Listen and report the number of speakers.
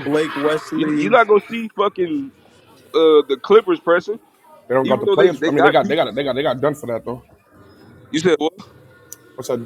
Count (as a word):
three